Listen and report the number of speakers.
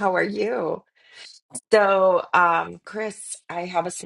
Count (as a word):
one